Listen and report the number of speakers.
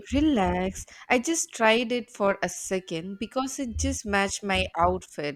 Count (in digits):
1